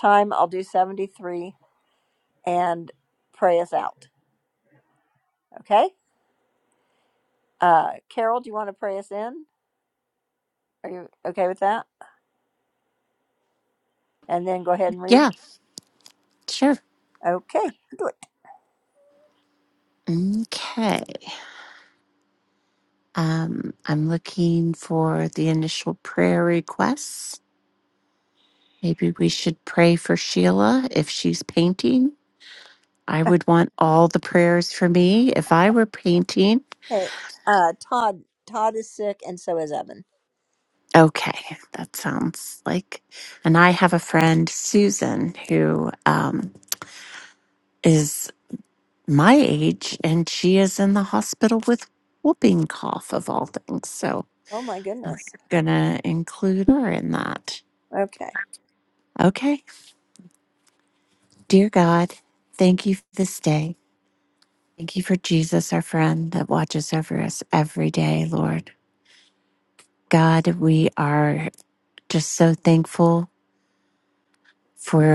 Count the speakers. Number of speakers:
2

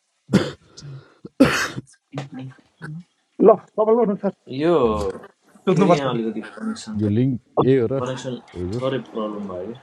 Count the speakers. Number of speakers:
3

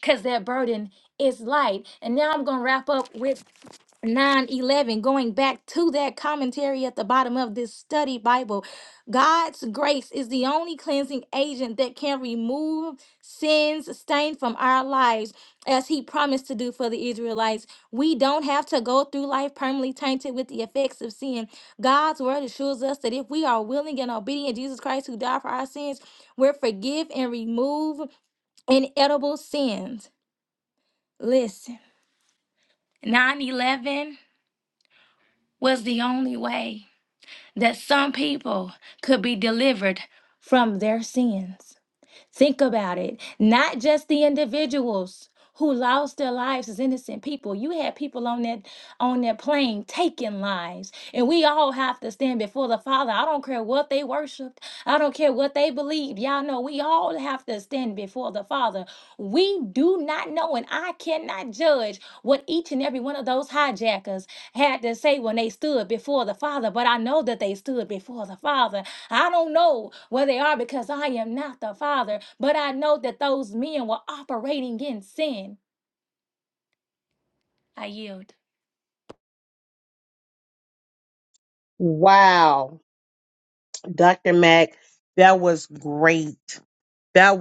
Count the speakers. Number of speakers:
2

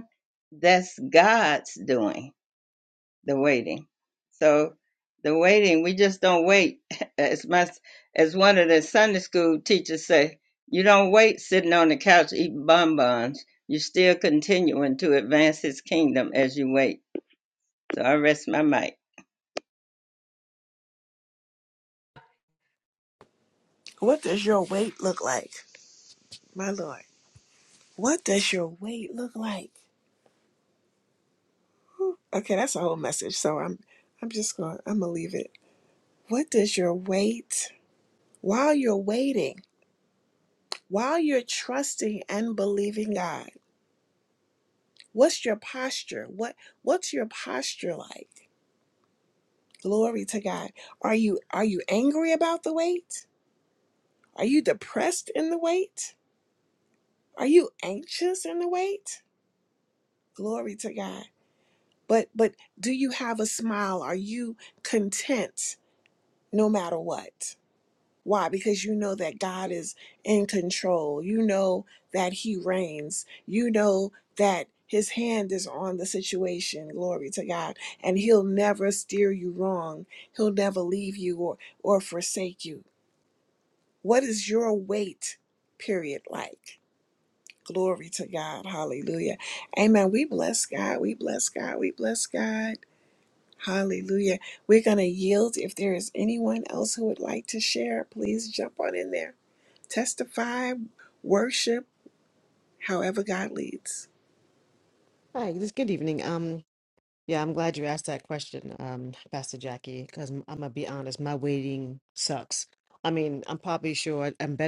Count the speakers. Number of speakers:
3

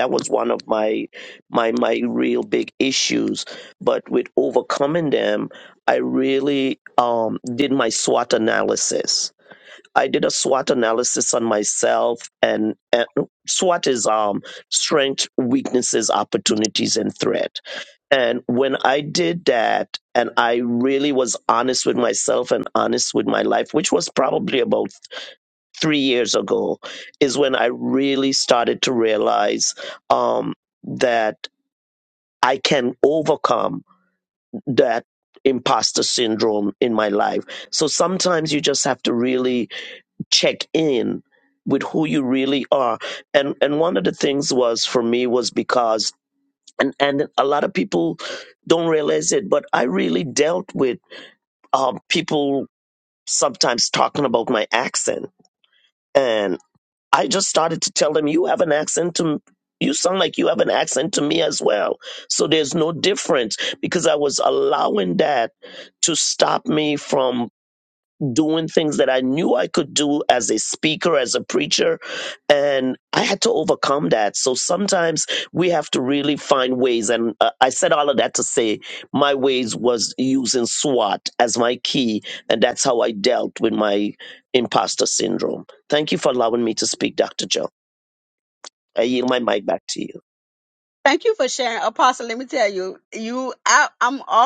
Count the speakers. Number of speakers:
2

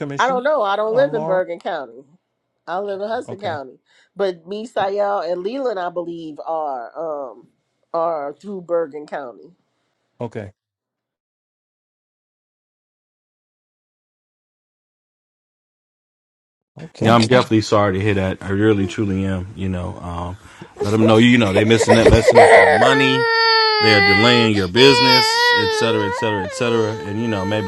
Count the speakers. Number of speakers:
3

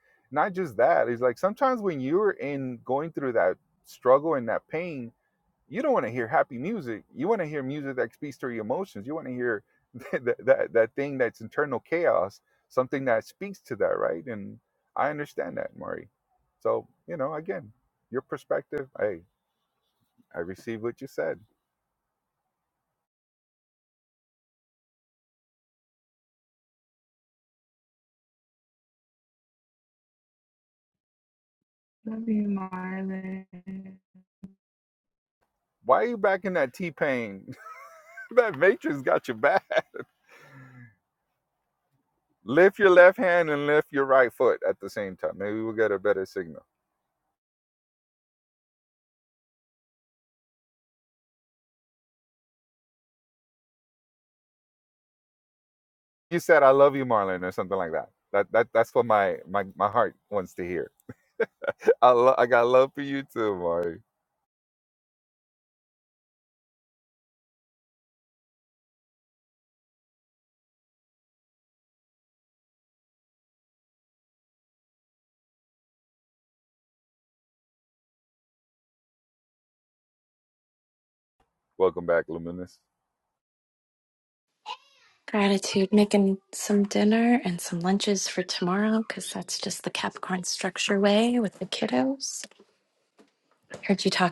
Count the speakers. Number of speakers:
3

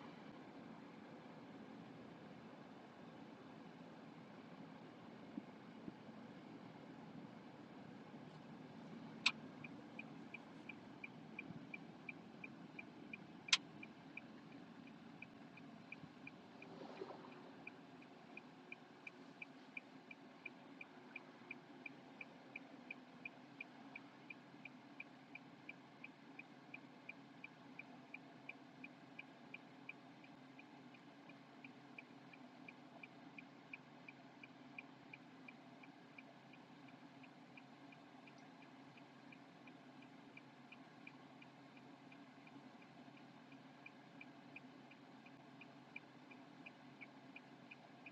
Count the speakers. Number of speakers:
0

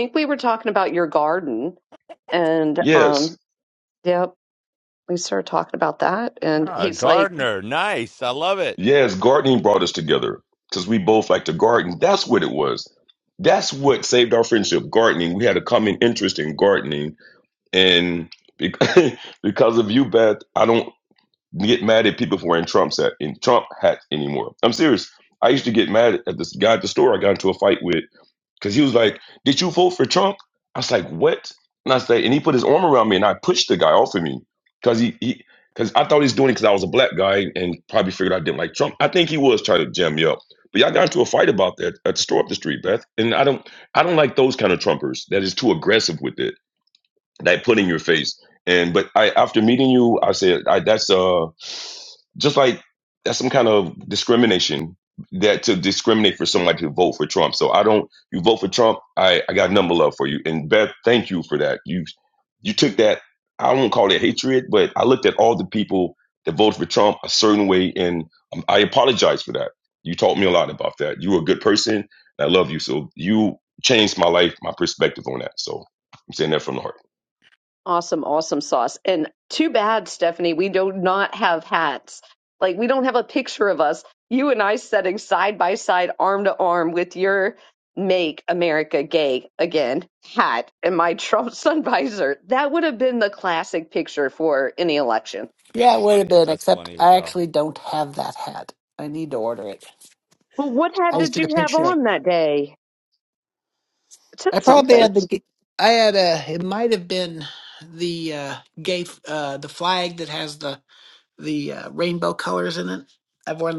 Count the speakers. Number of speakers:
4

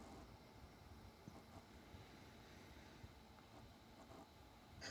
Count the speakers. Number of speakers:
0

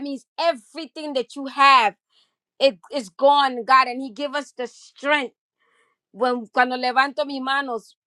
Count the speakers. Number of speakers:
1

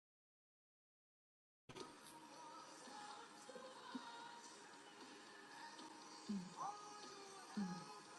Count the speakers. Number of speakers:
0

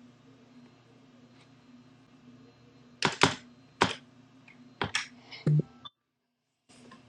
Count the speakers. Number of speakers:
0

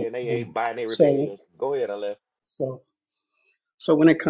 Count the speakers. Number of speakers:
2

